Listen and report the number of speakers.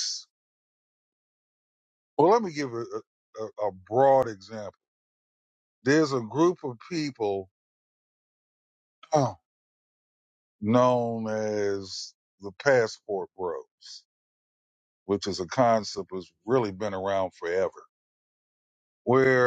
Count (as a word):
one